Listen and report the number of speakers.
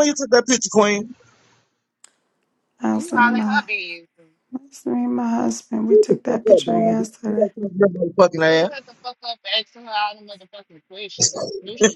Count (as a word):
three